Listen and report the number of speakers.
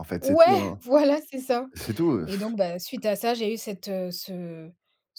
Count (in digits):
2